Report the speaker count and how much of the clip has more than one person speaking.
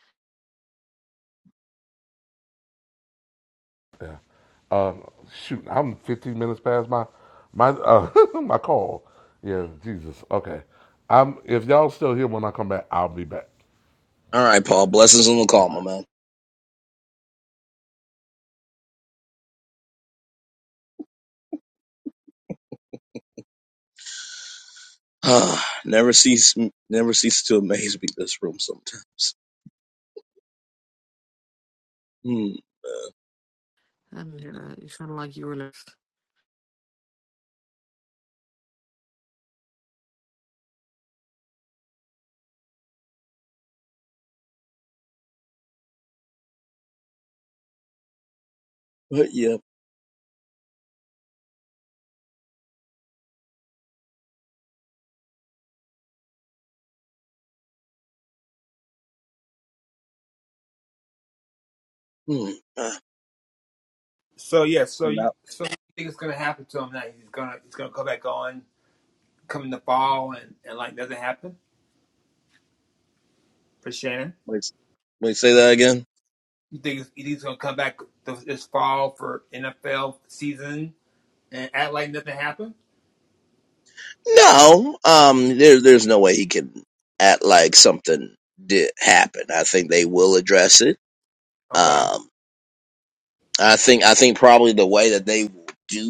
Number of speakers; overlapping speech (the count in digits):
4, about 1%